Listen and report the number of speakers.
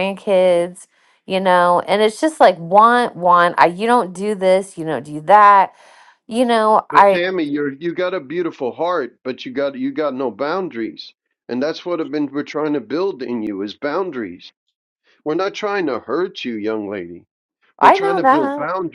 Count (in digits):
2